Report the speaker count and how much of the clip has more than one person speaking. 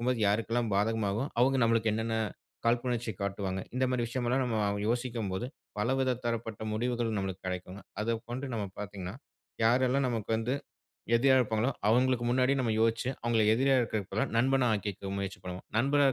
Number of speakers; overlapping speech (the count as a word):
one, no overlap